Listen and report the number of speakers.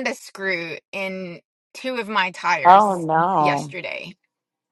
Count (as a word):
two